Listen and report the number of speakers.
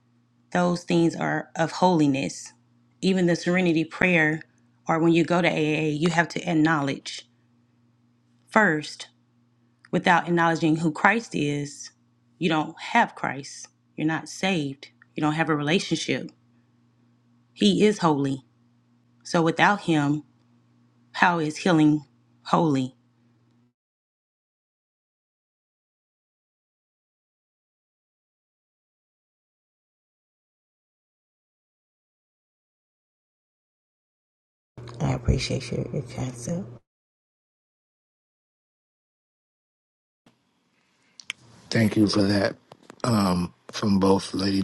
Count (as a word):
three